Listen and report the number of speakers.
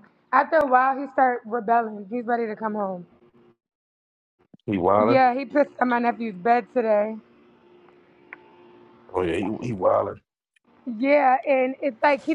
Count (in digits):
2